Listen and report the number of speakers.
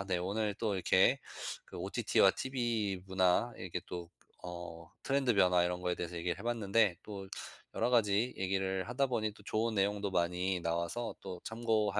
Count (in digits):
1